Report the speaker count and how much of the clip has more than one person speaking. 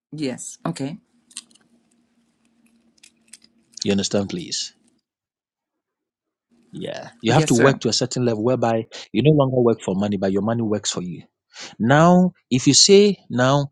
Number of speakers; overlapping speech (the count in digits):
2, about 4%